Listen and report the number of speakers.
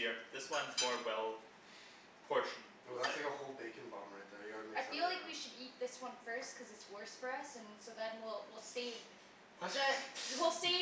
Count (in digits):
3